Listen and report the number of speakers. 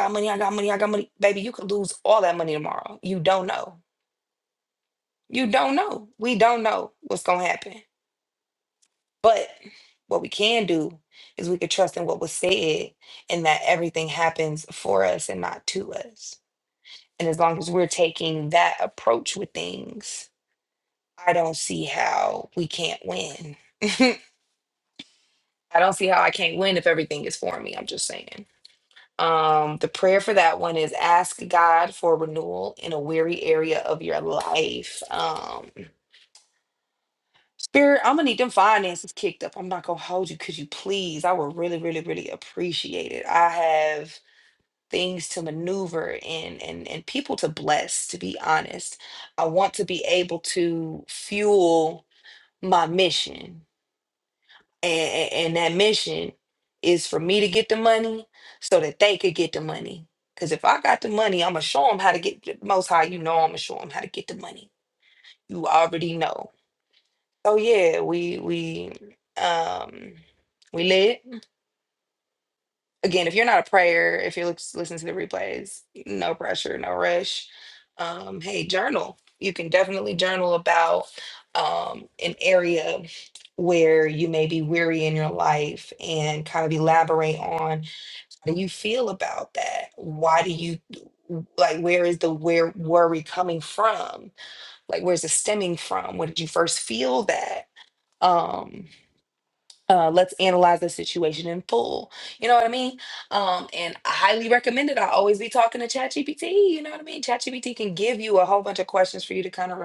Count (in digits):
1